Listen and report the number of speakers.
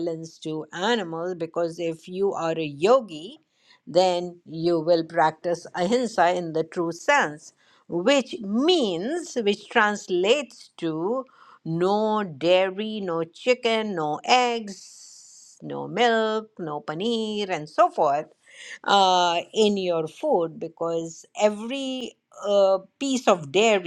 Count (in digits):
1